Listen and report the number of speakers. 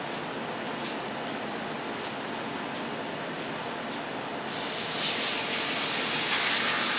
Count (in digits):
0